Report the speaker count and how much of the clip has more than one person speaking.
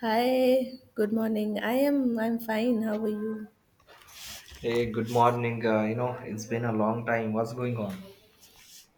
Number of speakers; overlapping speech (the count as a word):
two, no overlap